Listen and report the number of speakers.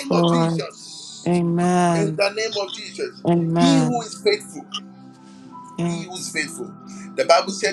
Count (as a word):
two